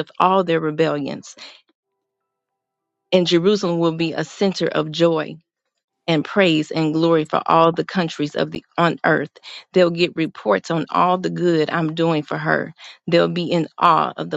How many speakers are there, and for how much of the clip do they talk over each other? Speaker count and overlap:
1, no overlap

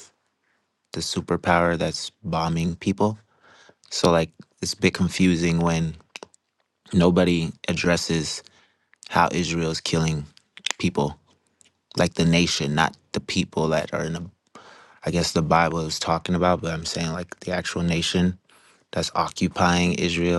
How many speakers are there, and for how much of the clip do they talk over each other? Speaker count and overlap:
1, no overlap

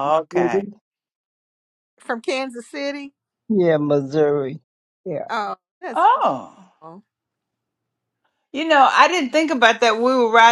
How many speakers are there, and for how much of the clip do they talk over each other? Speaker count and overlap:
3, about 3%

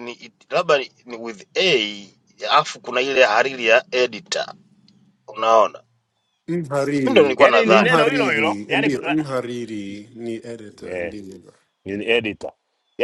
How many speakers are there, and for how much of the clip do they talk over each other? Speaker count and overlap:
3, about 17%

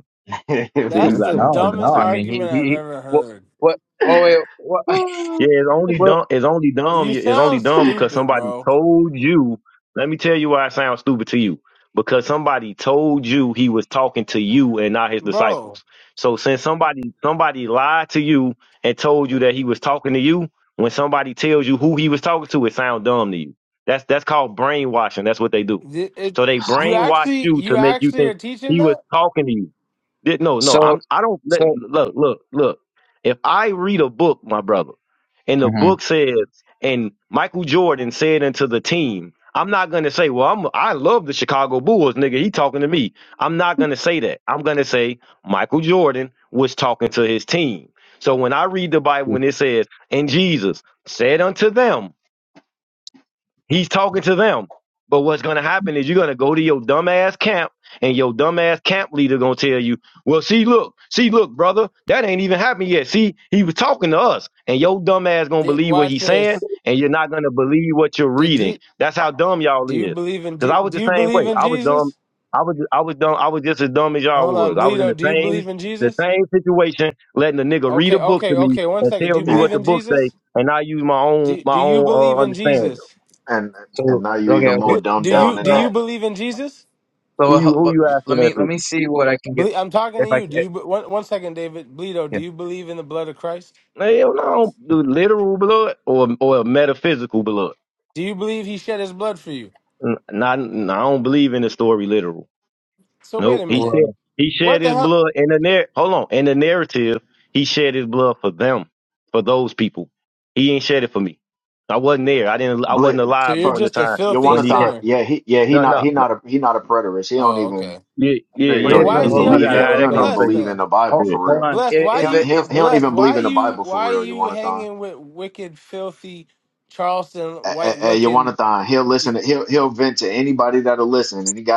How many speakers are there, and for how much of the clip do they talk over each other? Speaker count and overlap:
4, about 23%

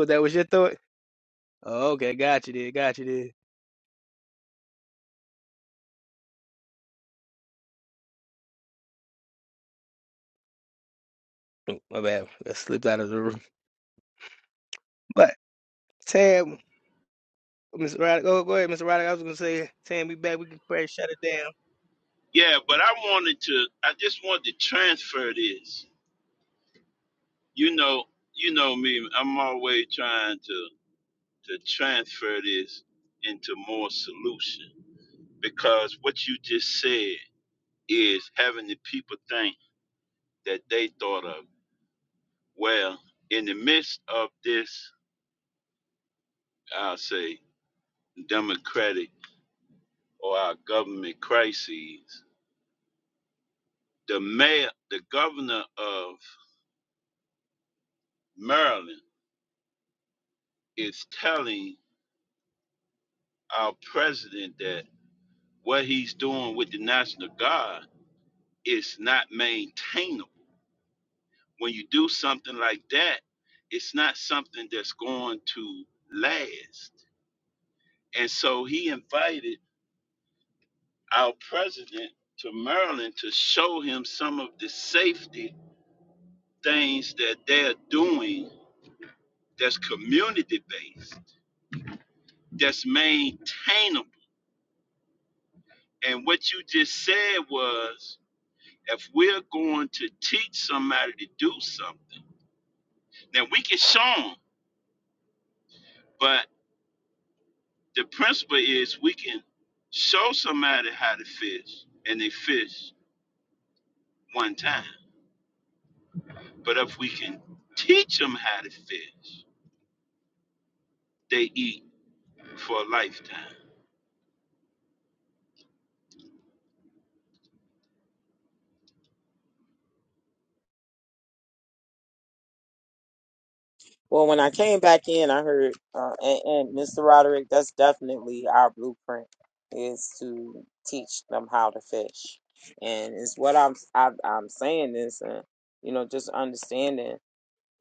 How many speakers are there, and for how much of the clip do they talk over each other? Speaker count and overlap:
3, no overlap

